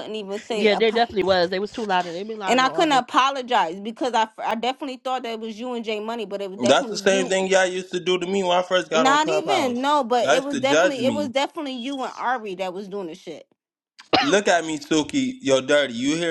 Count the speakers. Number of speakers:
3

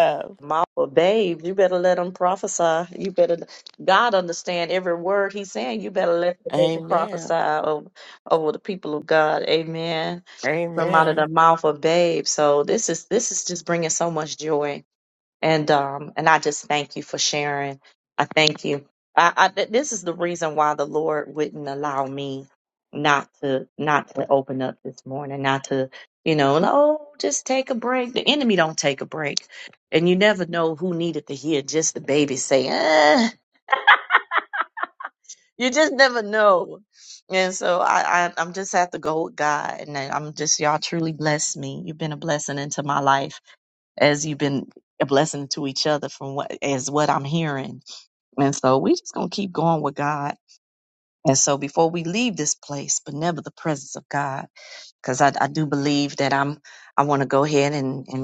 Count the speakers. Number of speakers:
2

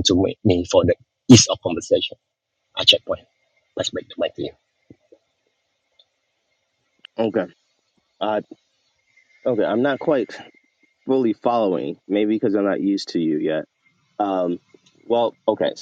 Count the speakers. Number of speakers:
2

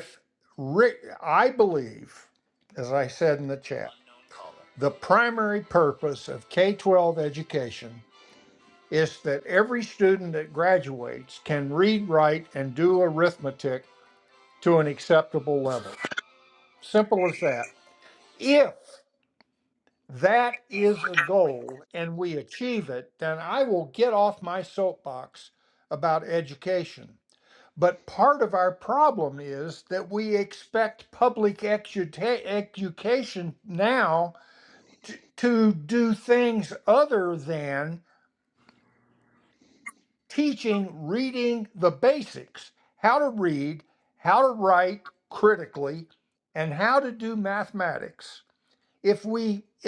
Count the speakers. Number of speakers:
1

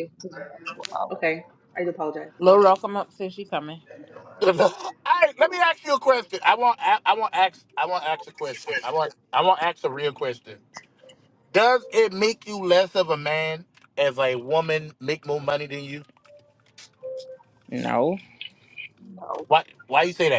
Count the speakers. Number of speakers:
4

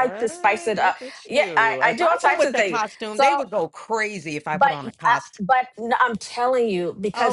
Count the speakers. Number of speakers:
2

